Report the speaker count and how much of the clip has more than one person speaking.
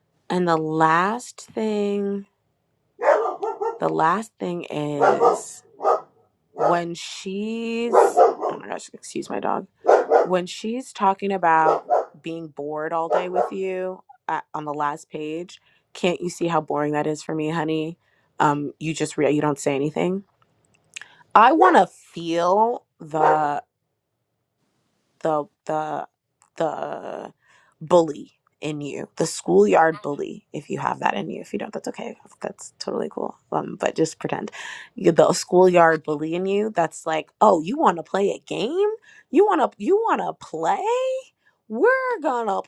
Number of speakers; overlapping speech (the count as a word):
one, no overlap